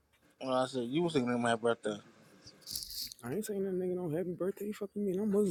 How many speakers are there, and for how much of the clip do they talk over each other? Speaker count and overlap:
2, no overlap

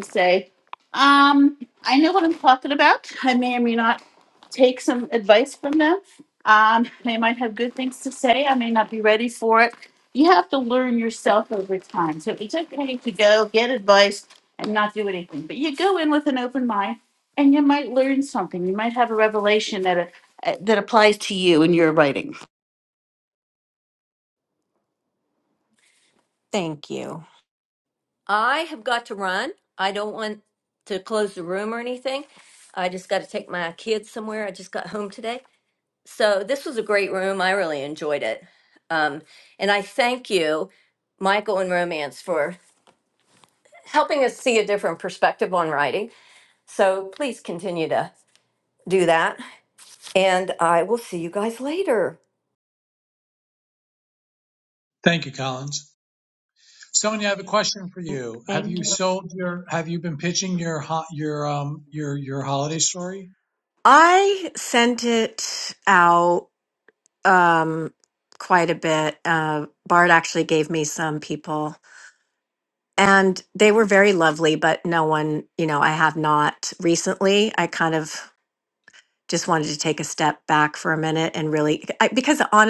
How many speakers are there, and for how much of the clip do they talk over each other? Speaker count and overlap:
4, no overlap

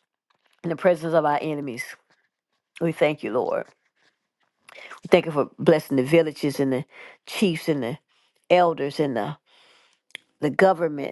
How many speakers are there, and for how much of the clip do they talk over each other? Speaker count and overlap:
1, no overlap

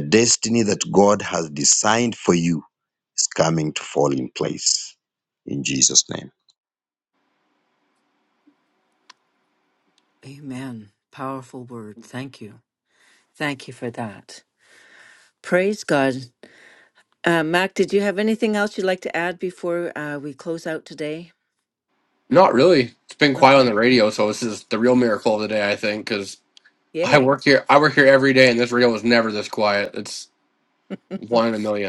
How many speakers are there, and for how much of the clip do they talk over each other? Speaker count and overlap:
3, about 2%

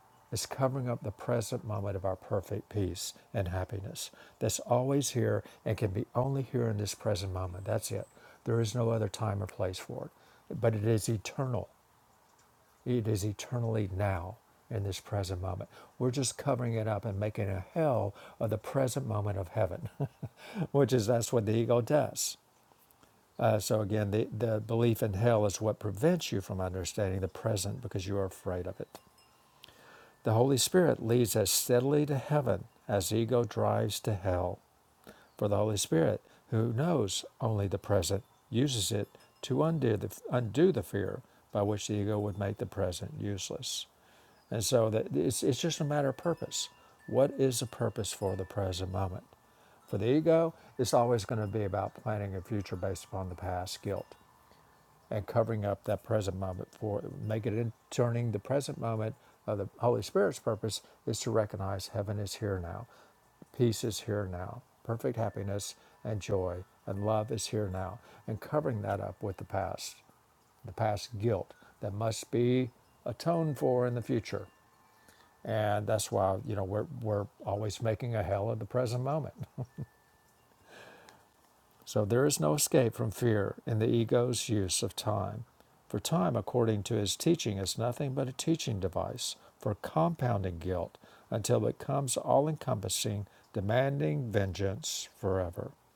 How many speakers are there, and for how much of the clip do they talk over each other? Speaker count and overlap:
1, no overlap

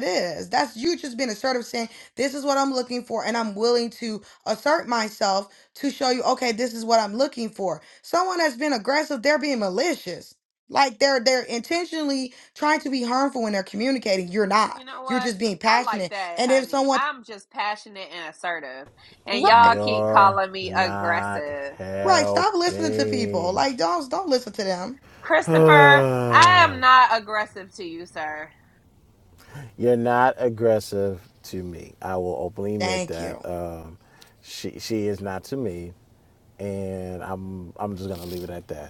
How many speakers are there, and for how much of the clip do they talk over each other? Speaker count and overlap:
3, about 17%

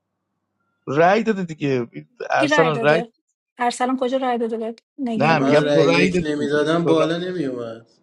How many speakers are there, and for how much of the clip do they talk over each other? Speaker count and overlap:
3, about 32%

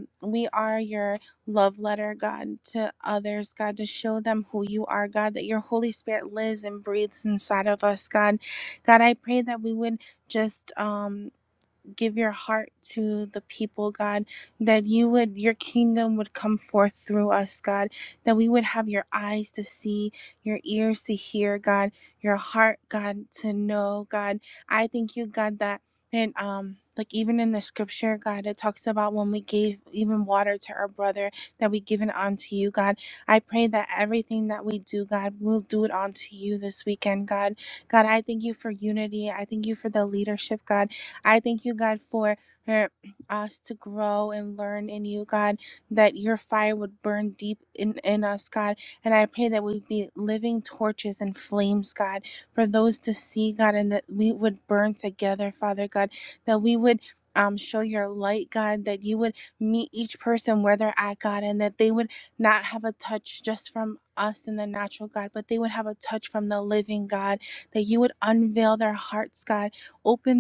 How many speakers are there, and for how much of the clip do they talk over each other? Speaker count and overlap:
1, no overlap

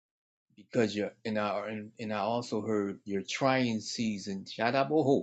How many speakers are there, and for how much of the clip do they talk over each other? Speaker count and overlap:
1, no overlap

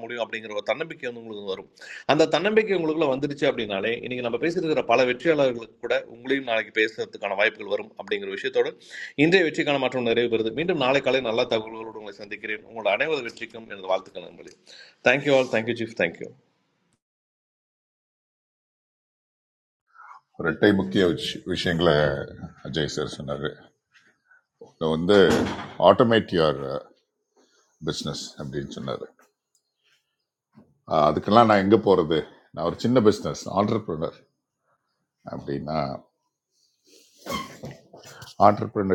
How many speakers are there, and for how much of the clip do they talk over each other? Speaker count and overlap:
2, no overlap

